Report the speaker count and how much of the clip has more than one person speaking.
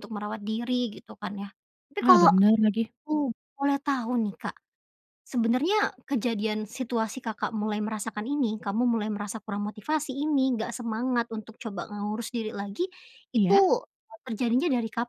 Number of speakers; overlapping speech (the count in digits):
2, about 4%